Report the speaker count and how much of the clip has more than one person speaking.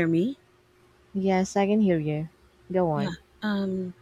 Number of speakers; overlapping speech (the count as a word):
two, about 4%